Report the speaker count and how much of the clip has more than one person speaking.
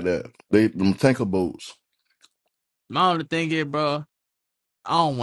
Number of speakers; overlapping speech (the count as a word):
two, no overlap